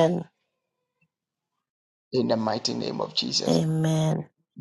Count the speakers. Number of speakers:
2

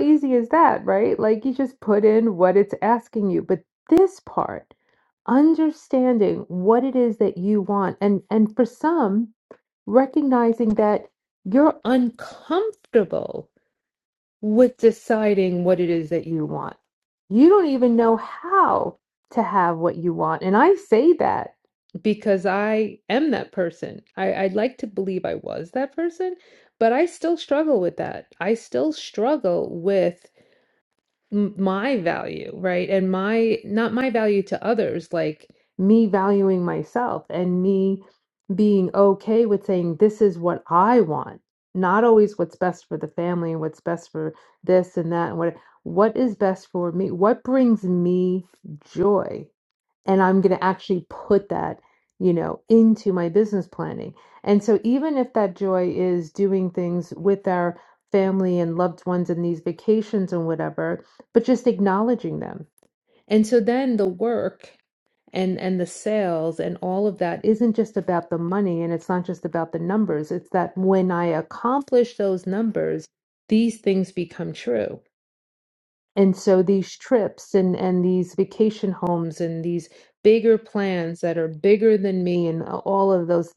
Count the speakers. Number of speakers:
1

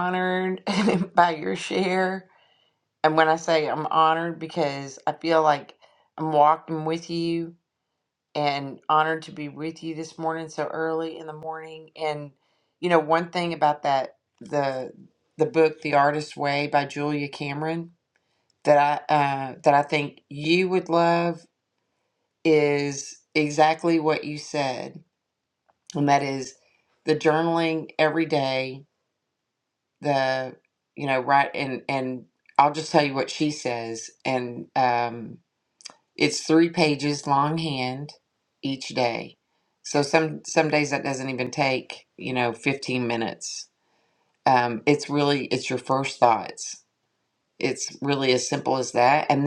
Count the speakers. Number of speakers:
1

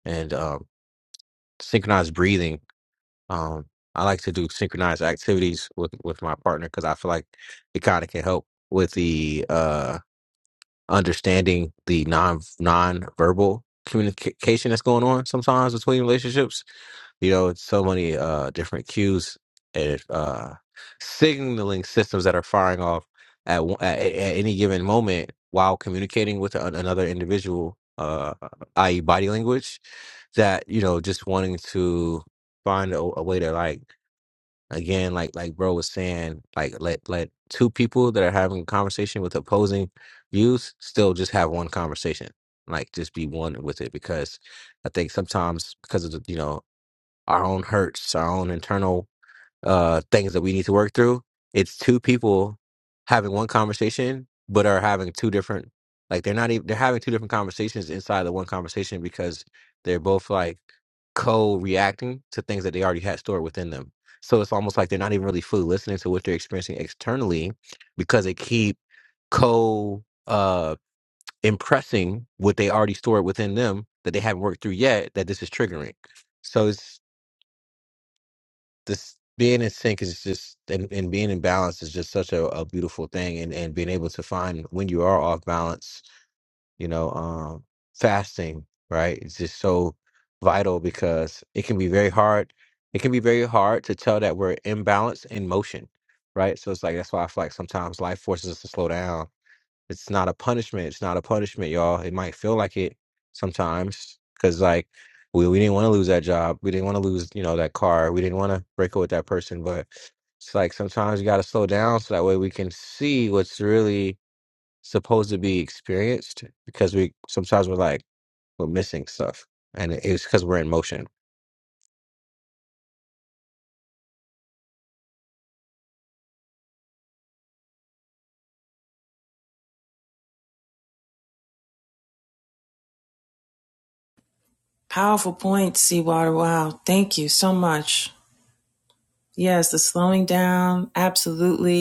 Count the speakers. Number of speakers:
2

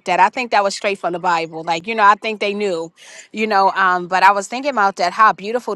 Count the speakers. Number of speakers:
1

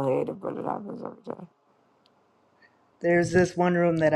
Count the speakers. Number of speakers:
2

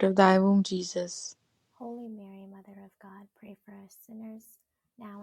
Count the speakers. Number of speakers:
2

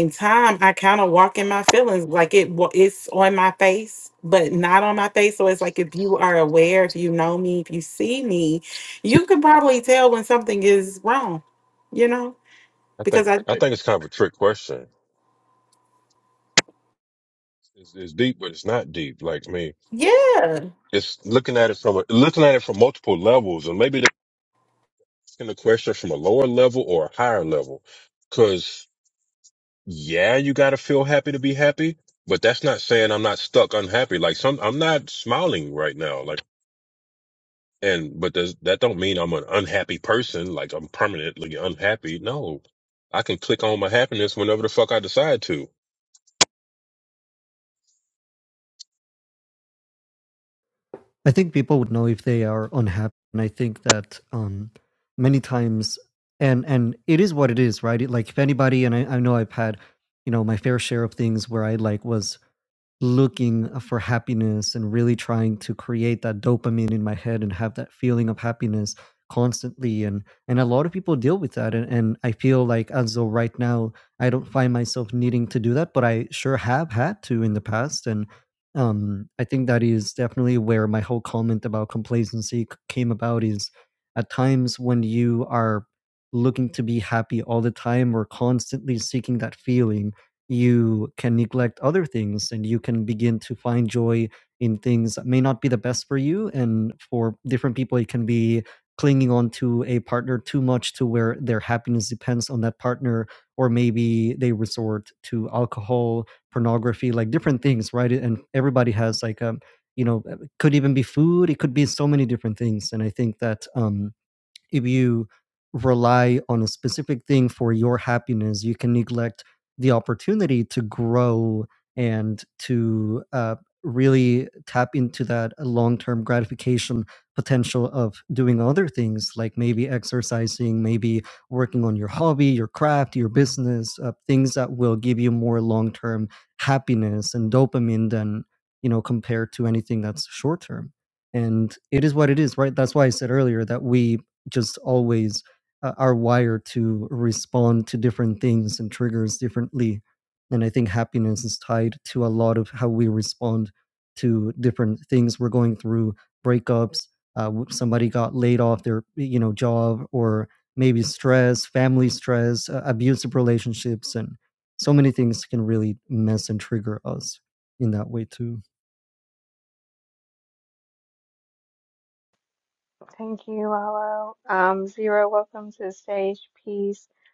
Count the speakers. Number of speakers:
4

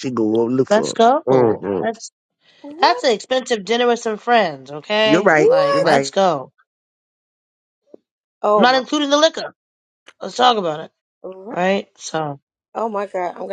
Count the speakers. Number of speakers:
3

